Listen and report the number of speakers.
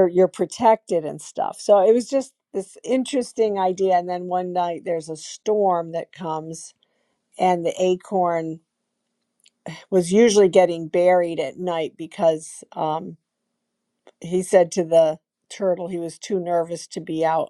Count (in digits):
1